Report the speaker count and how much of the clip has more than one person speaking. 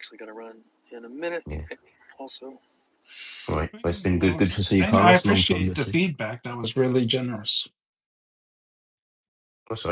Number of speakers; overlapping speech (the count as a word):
three, about 19%